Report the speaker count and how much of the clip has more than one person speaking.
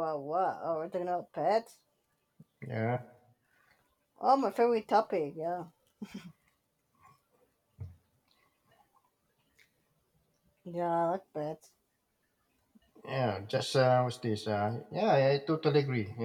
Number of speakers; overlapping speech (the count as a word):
two, no overlap